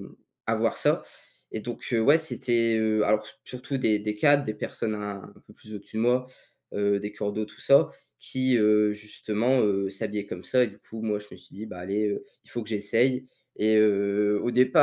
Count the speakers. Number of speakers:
1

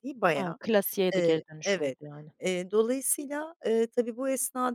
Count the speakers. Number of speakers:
2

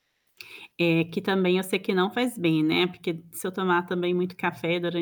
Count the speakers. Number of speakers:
1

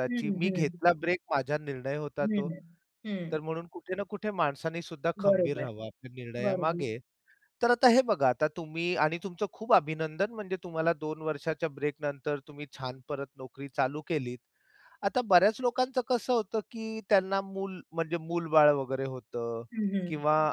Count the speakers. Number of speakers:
2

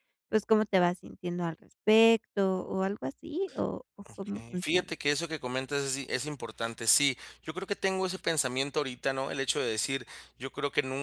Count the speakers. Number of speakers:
2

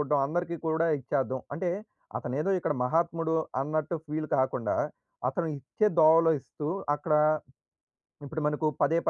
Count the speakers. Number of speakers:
1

